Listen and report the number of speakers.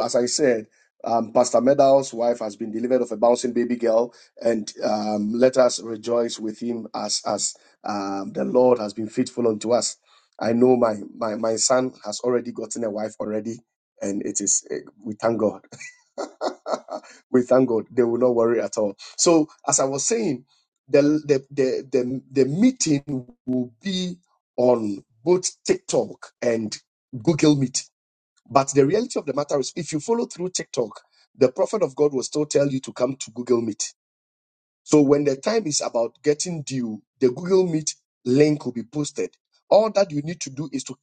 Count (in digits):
1